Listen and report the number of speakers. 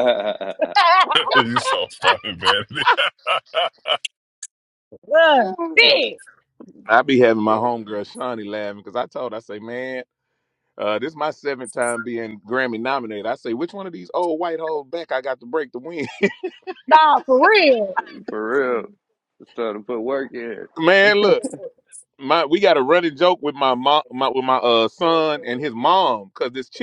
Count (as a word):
four